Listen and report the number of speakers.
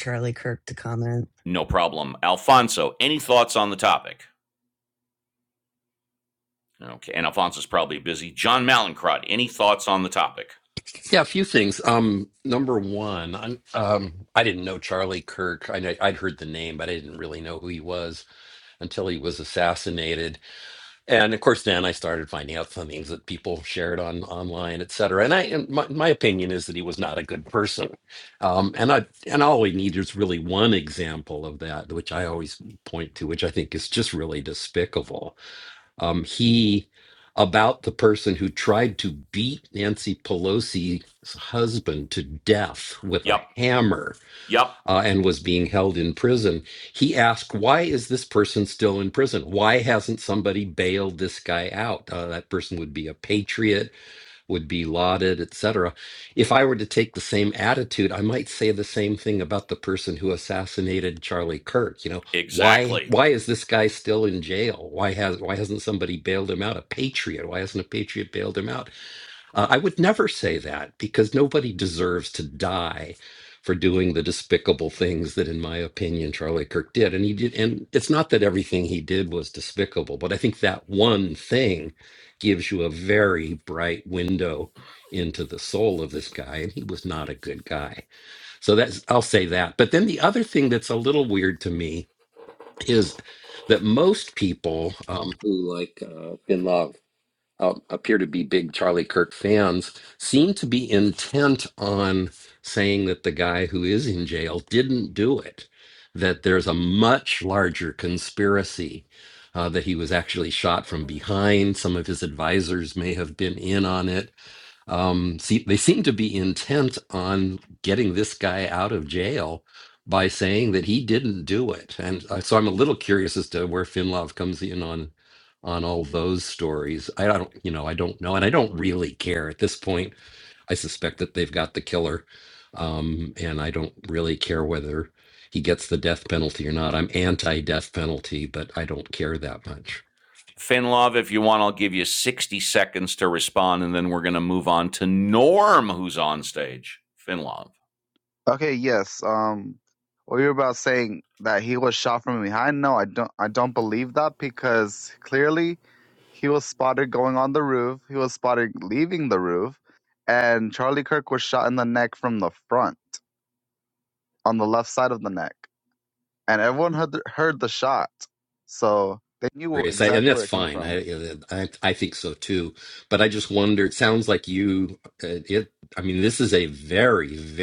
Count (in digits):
4